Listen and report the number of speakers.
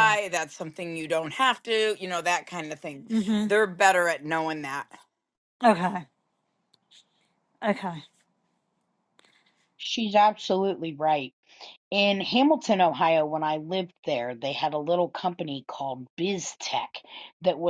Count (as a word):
three